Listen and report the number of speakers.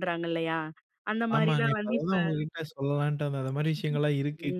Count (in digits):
2